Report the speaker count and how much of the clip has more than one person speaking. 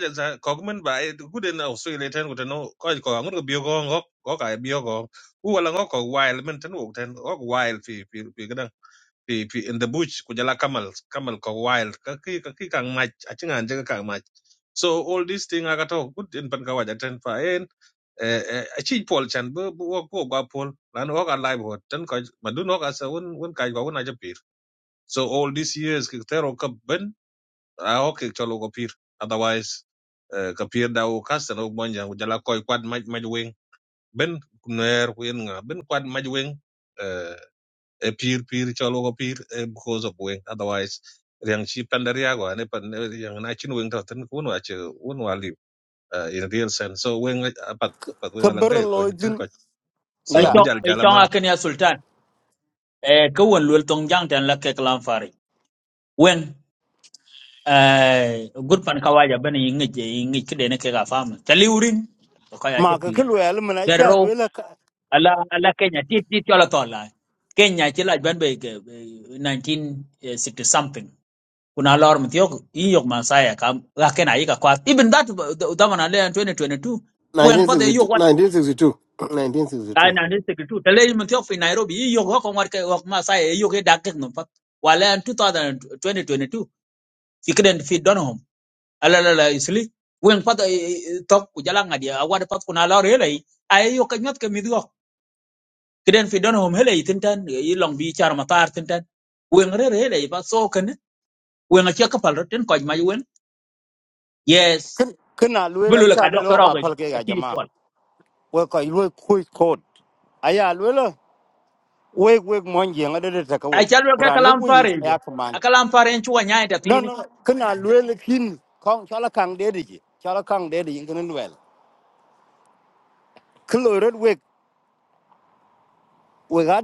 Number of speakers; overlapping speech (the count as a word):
four, about 5%